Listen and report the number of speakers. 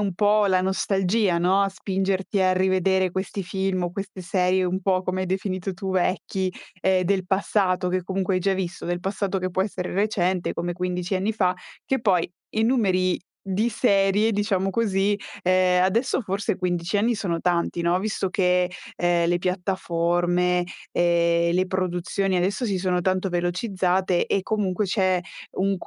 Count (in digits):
1